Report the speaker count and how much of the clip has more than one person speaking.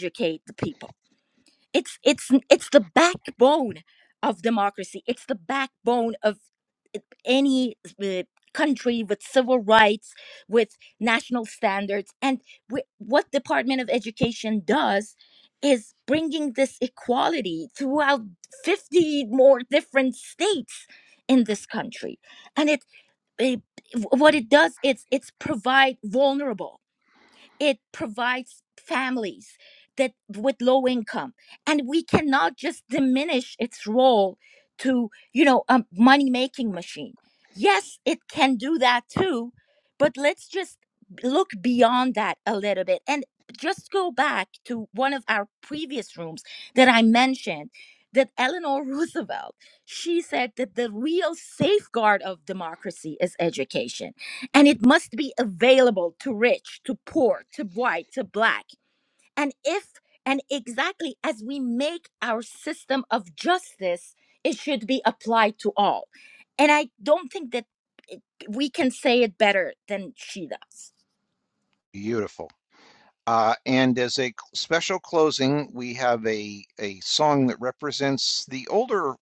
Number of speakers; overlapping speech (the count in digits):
2, no overlap